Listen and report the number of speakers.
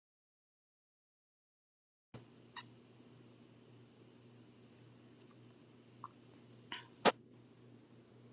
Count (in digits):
0